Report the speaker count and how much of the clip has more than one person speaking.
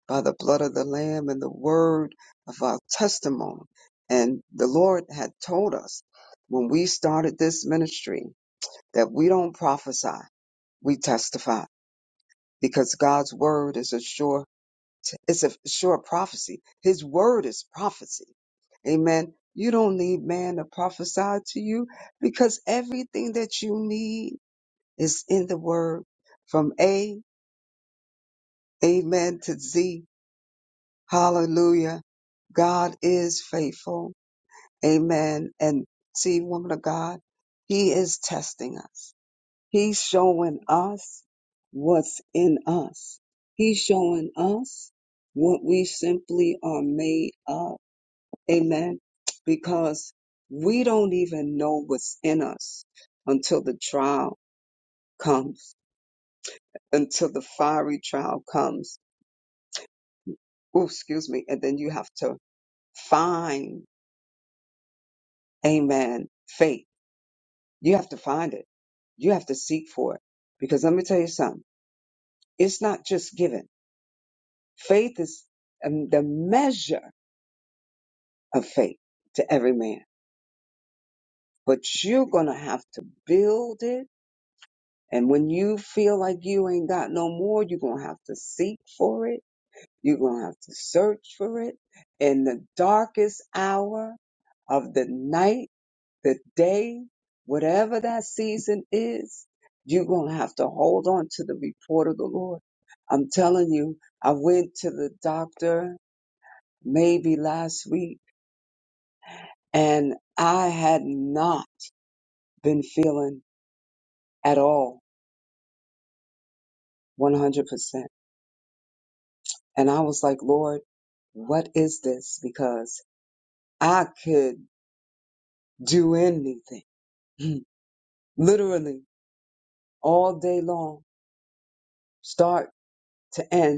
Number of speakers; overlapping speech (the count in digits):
1, no overlap